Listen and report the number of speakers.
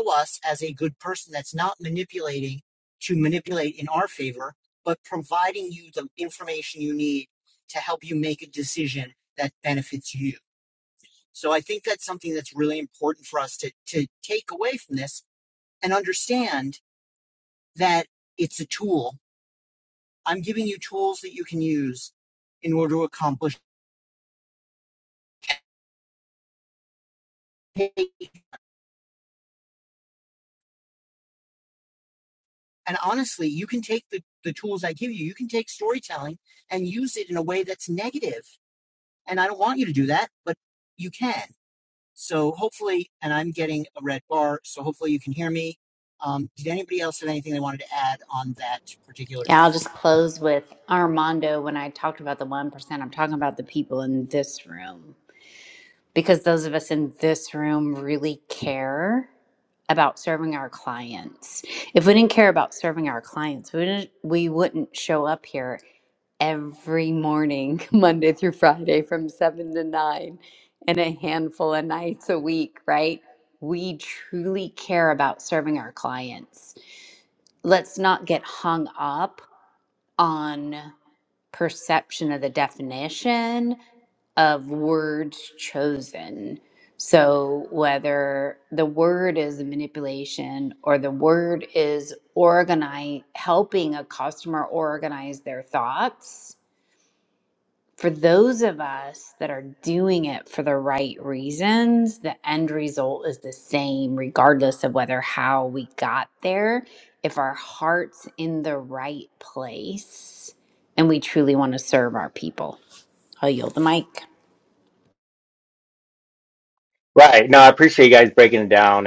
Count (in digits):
3